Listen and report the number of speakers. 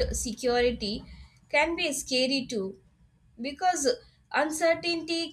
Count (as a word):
one